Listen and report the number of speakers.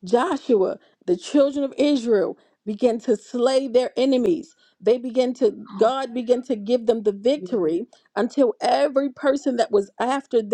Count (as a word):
one